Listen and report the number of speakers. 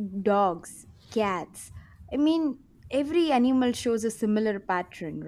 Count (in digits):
1